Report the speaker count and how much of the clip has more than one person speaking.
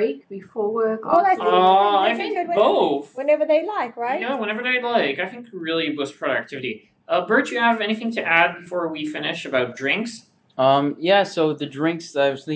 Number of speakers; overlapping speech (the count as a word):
four, about 19%